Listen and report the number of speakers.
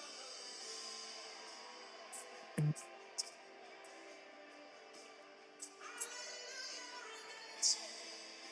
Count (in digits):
0